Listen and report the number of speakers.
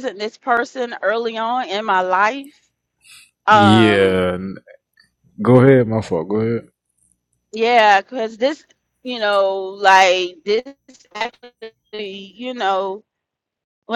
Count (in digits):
2